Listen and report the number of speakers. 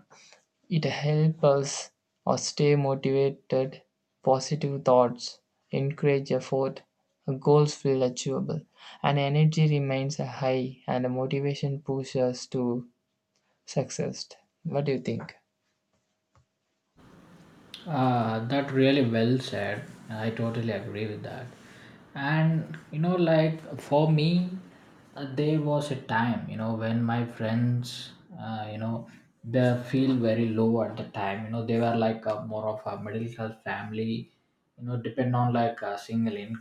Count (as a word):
two